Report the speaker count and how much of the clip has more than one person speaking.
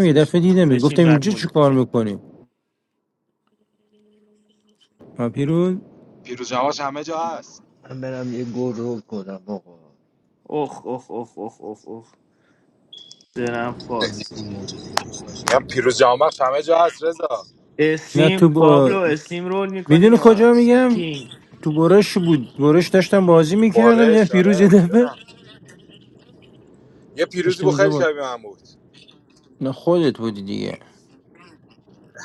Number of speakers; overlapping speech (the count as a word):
four, about 14%